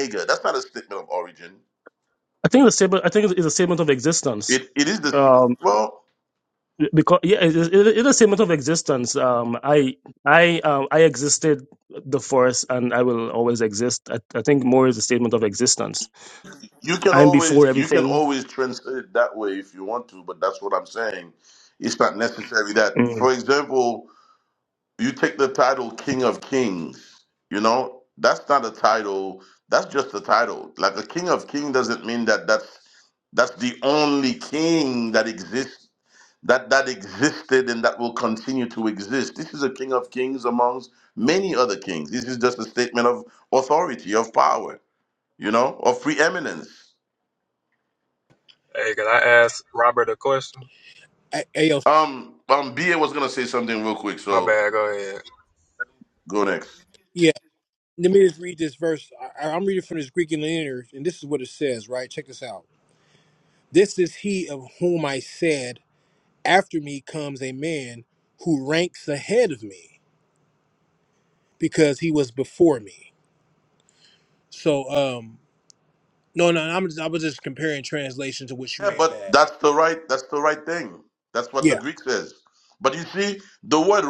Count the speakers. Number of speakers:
four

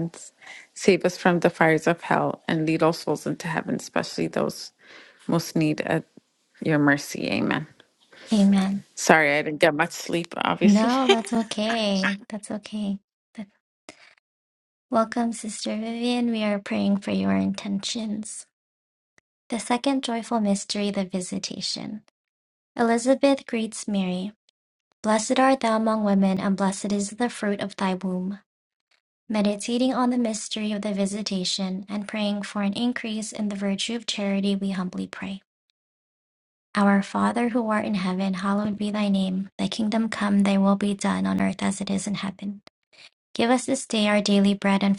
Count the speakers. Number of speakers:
two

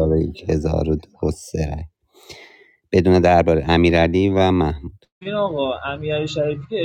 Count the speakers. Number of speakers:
two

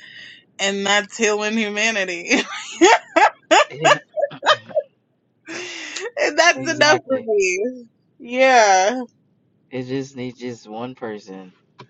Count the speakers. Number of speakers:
two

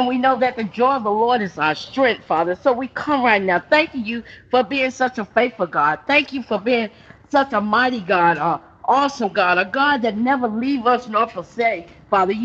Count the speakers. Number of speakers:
one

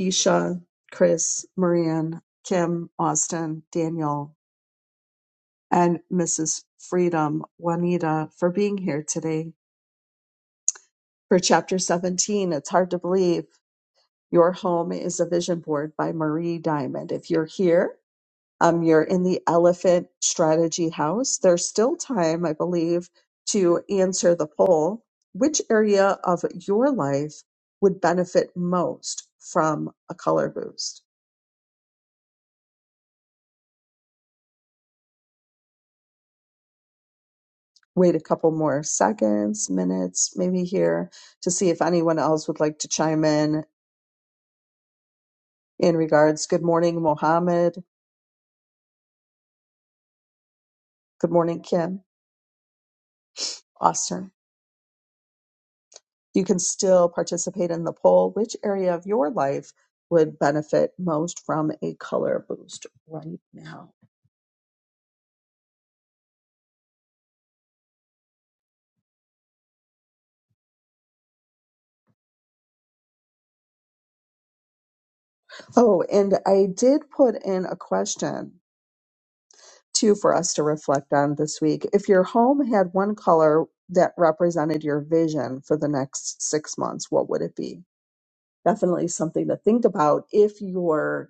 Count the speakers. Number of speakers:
one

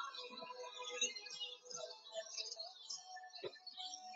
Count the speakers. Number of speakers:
zero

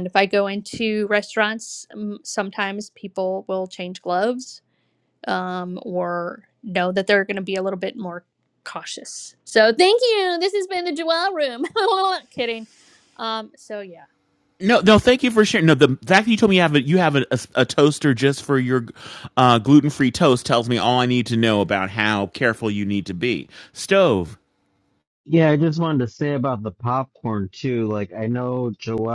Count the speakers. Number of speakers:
three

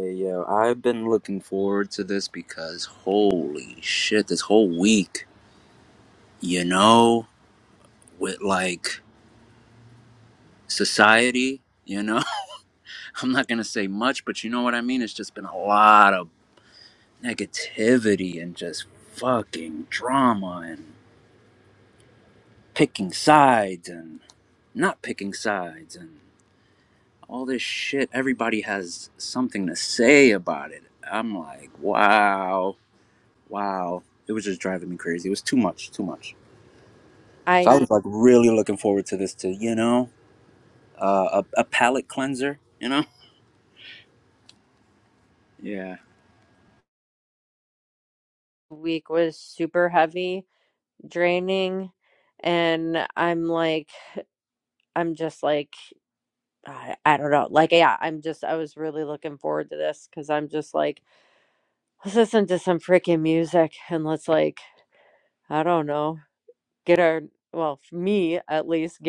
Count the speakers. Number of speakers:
two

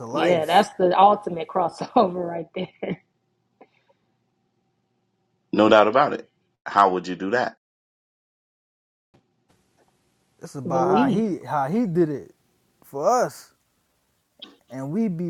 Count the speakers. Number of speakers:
three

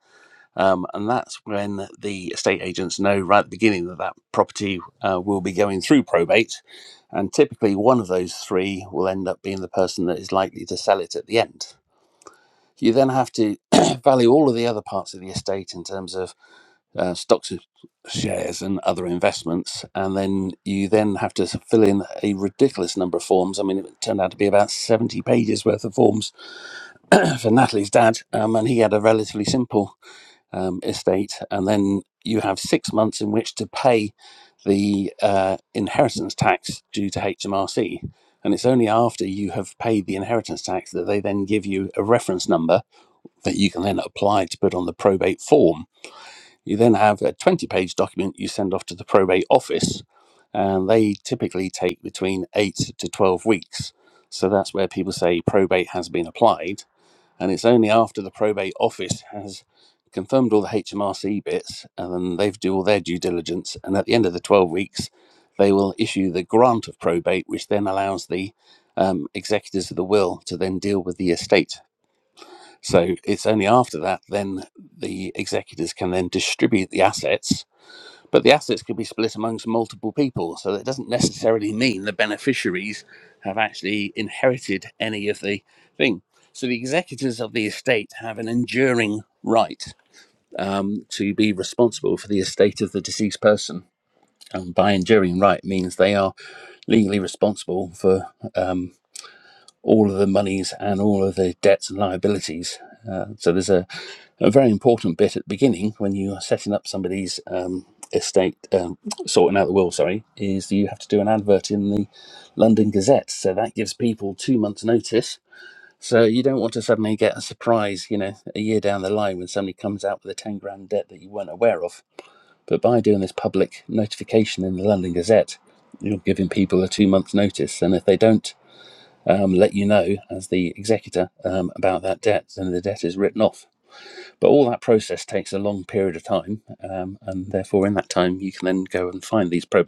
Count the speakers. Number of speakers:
one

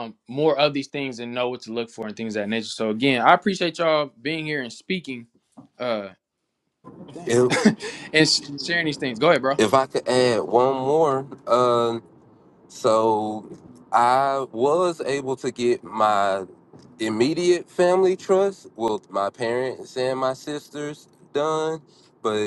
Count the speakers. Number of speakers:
two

